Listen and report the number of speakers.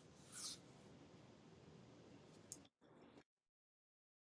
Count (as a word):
zero